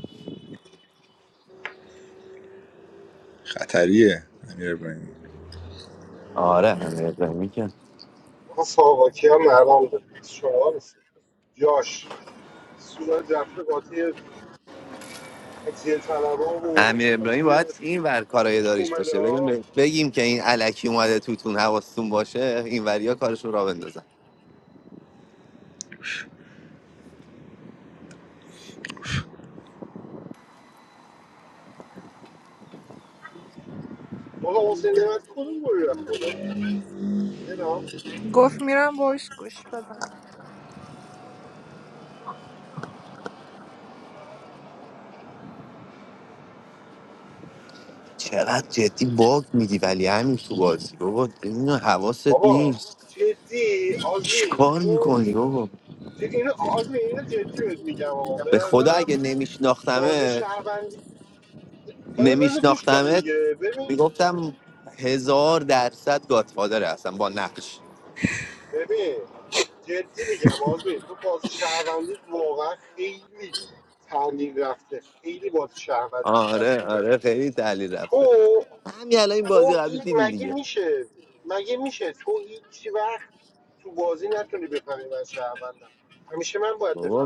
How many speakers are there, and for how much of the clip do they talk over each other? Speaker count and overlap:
four, about 9%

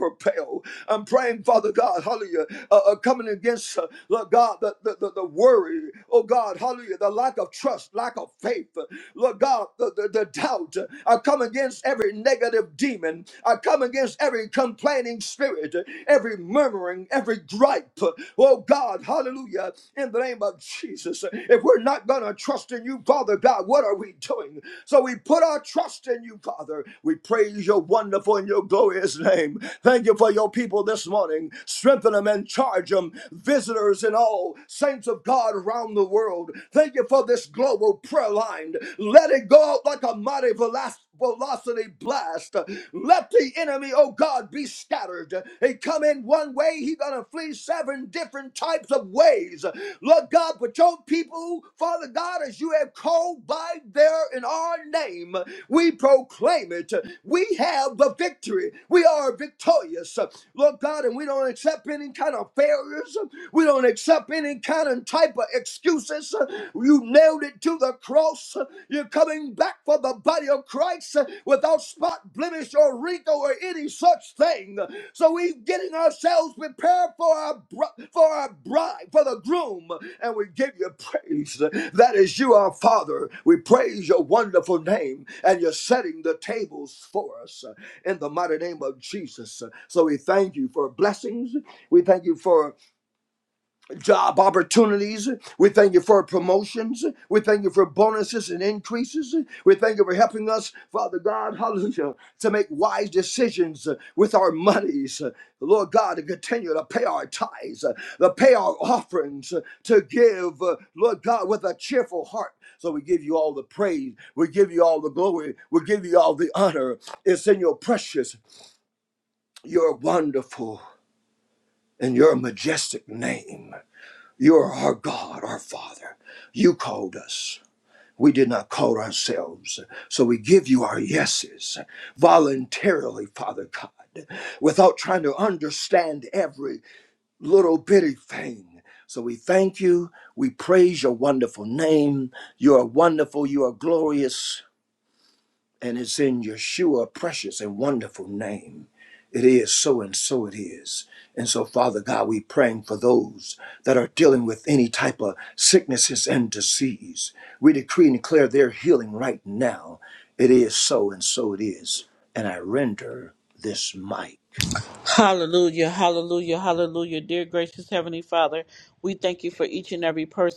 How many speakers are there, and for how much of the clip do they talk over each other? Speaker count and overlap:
two, no overlap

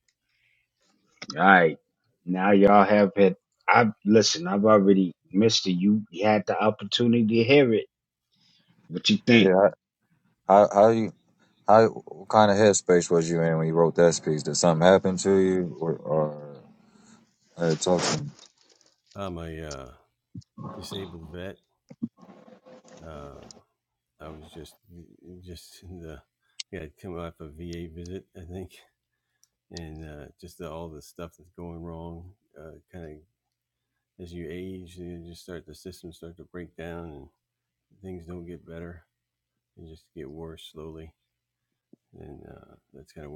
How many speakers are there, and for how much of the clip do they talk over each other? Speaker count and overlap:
three, under 1%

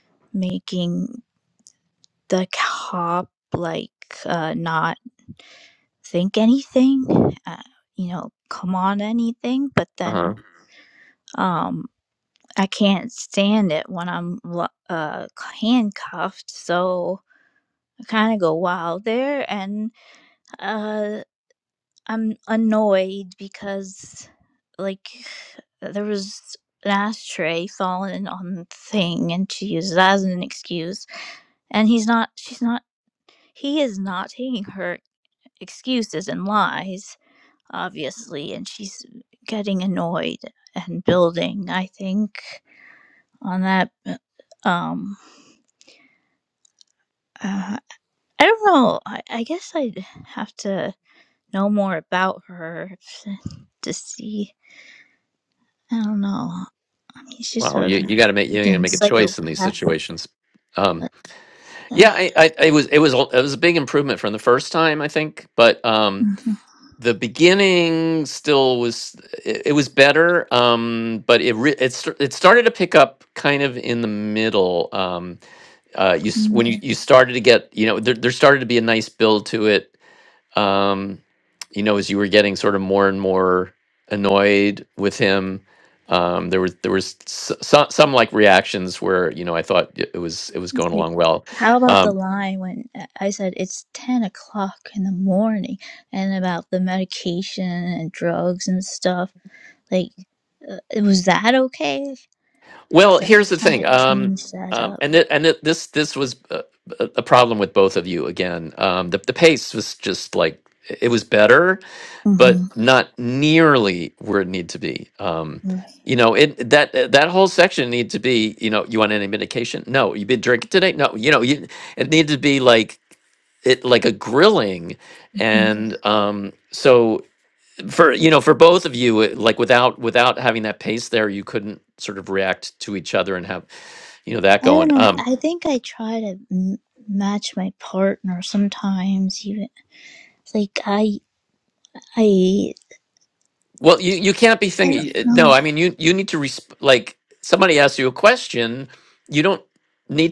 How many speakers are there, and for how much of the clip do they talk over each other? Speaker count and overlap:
two, about 4%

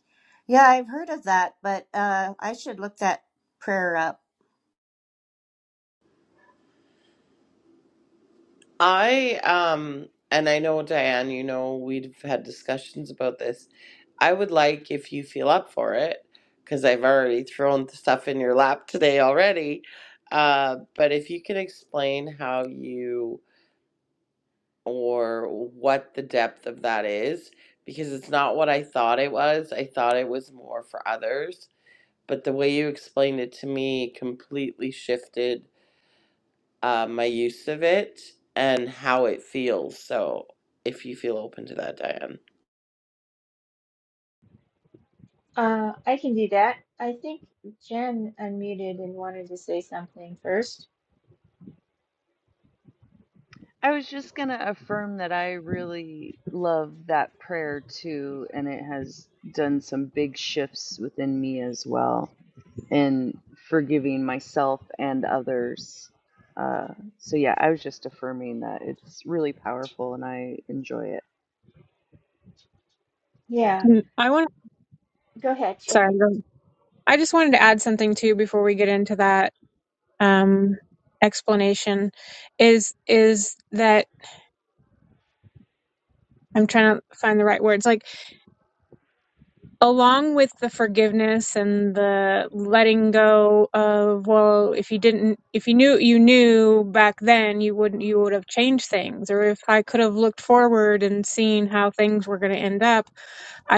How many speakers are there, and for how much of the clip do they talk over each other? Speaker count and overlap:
five, under 1%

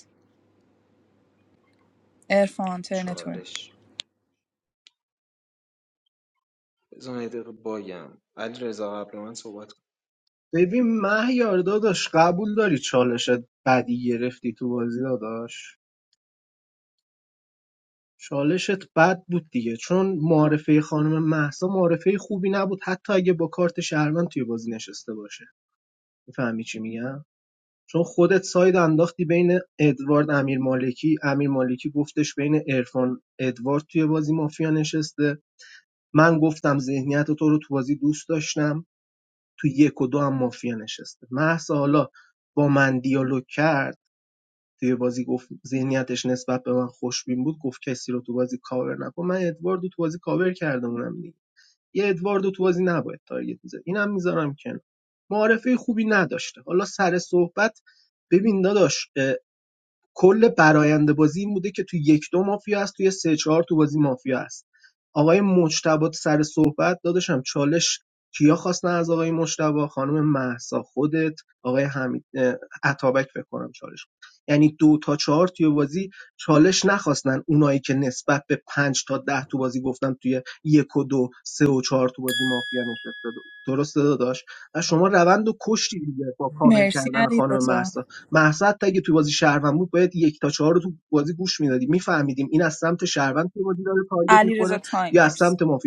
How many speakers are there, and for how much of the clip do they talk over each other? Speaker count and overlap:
three, about 3%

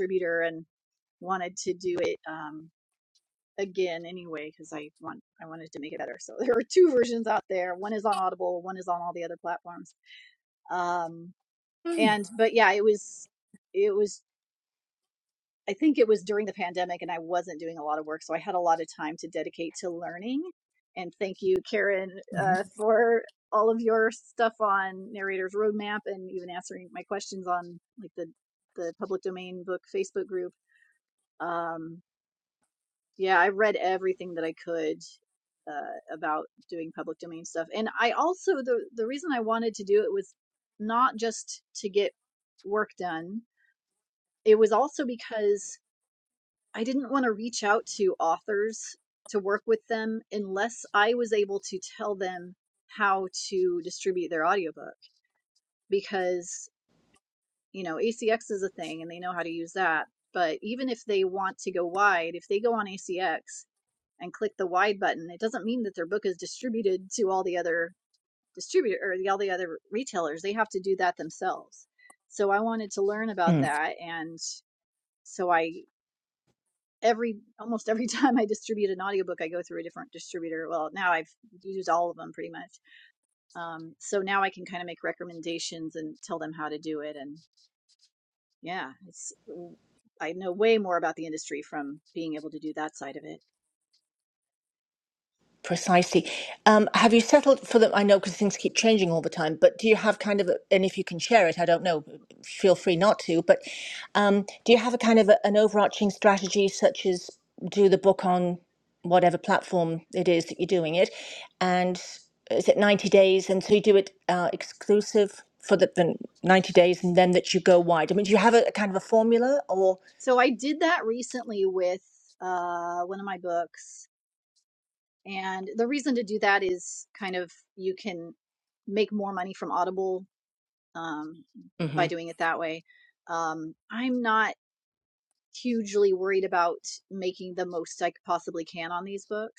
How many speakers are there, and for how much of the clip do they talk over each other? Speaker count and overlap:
two, under 1%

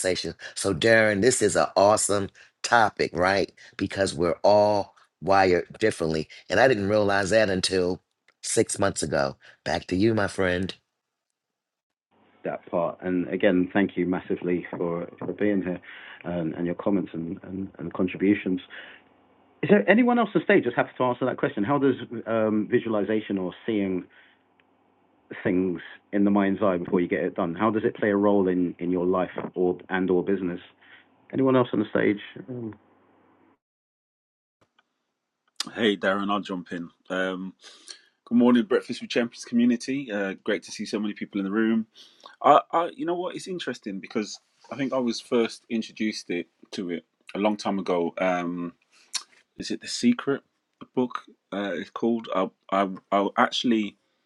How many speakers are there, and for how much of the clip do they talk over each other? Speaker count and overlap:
three, no overlap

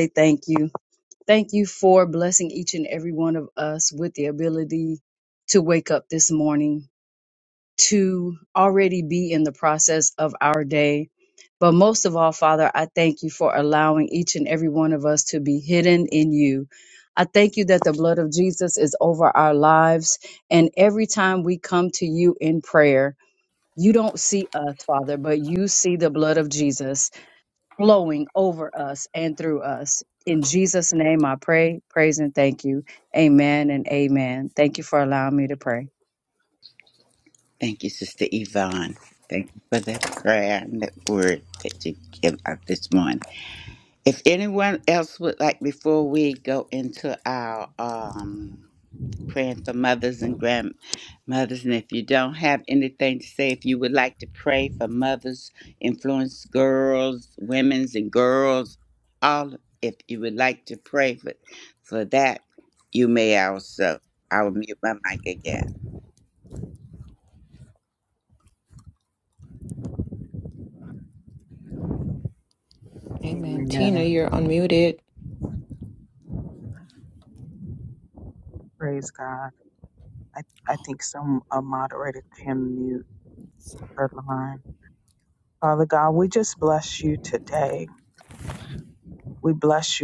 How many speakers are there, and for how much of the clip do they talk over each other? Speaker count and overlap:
four, about 1%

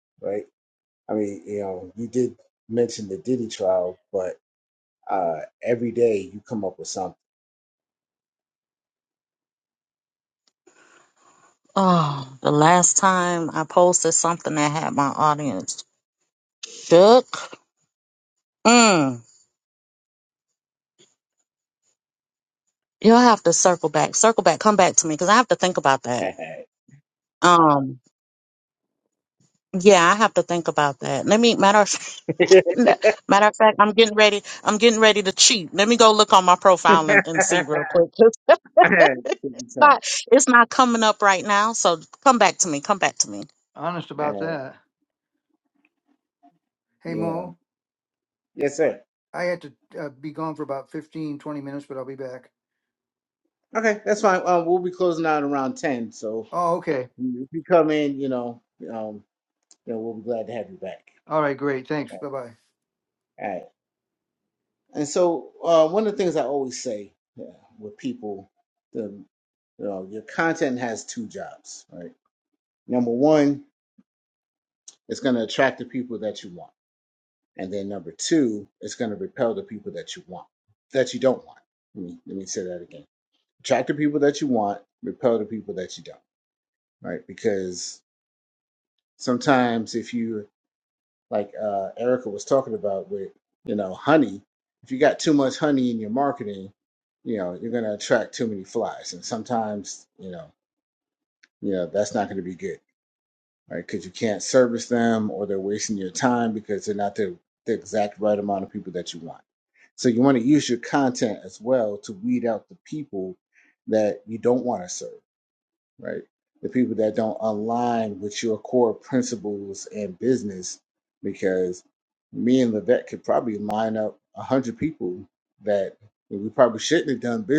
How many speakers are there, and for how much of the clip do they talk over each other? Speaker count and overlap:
three, about 1%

